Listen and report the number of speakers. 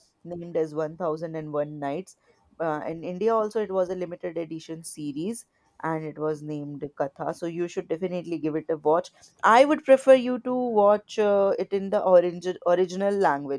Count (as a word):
one